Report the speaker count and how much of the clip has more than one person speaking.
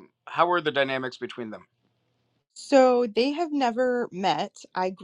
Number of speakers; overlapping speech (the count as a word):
two, no overlap